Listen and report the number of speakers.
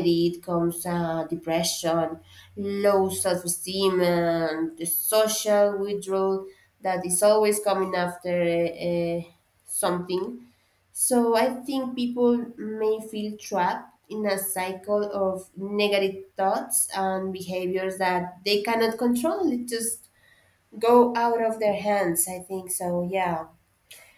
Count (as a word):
one